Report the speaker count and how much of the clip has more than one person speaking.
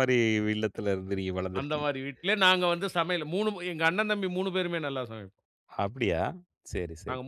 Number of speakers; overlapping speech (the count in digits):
2, about 5%